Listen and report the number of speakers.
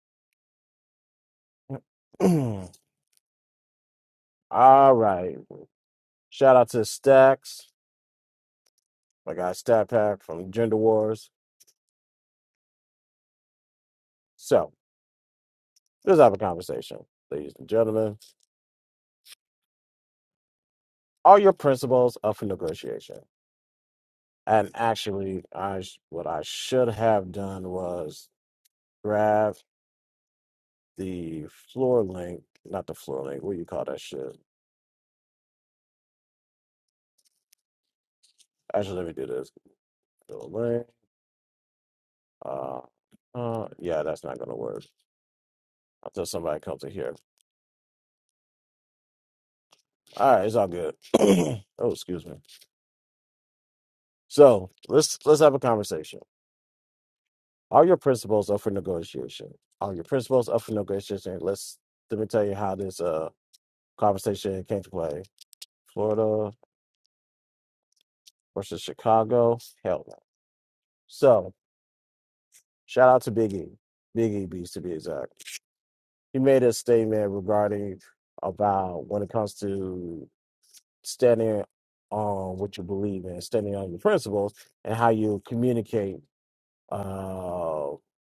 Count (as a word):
one